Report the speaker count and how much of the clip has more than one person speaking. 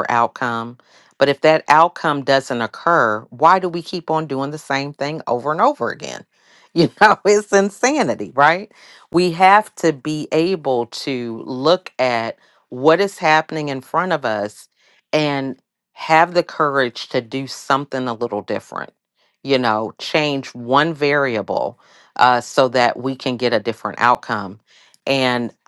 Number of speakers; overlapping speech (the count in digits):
1, no overlap